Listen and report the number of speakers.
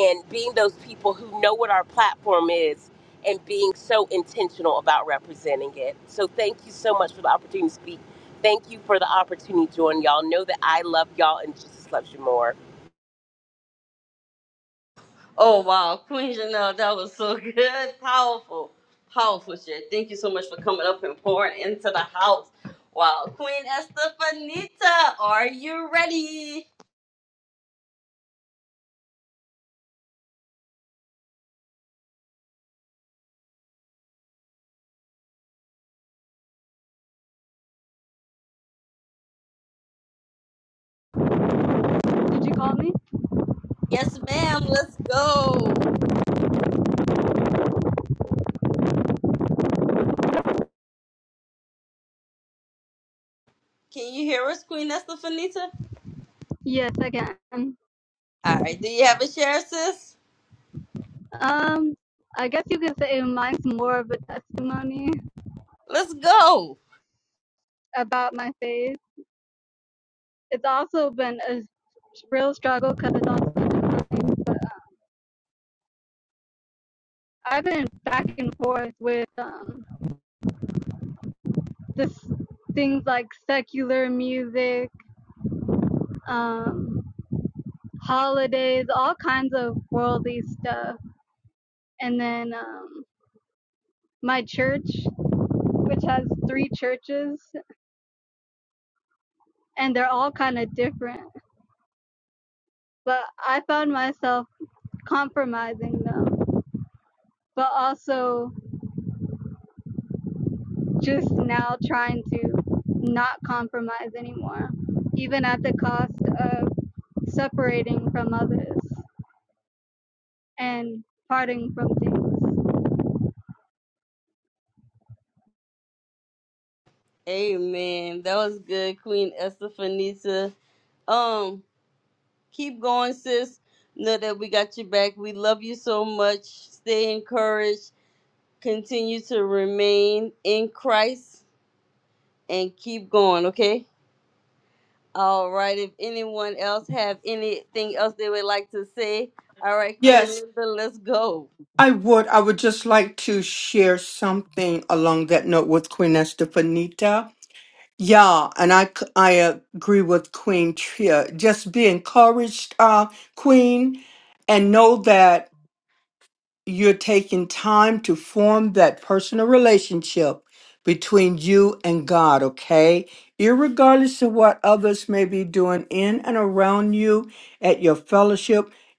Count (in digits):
4